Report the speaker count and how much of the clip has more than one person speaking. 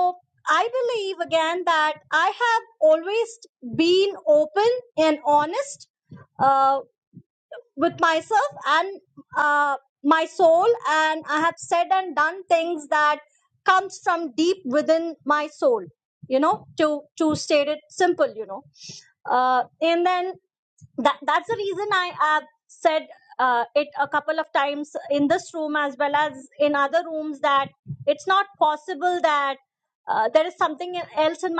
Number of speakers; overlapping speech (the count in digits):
1, no overlap